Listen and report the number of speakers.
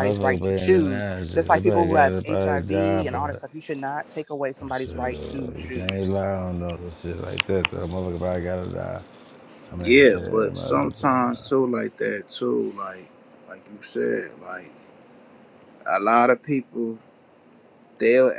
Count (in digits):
3